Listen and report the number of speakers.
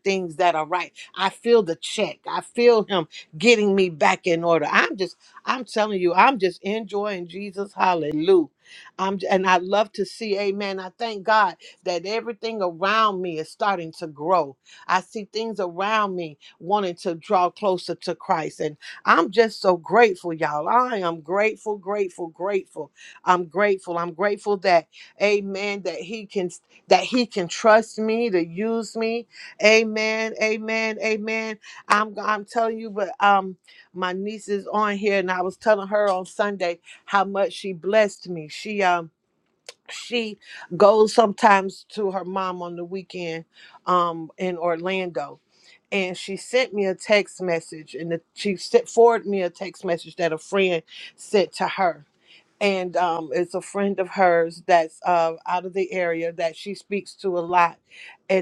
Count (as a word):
one